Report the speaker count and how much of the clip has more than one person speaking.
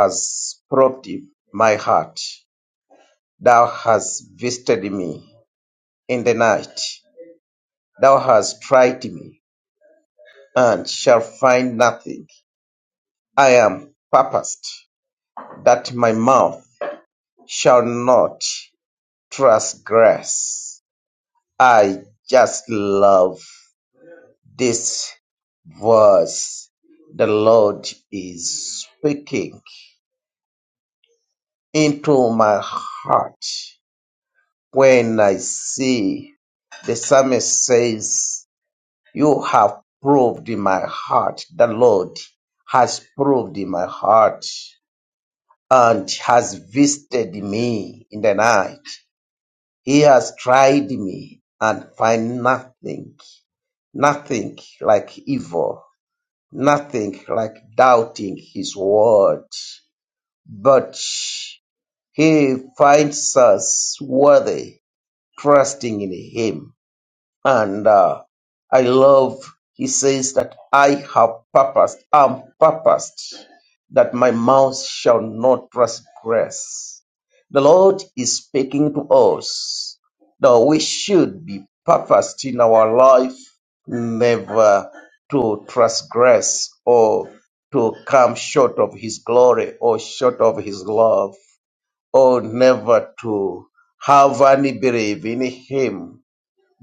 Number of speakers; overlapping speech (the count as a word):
one, no overlap